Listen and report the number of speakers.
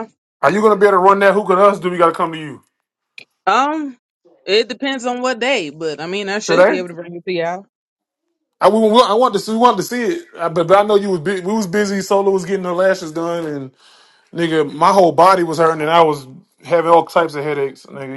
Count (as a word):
two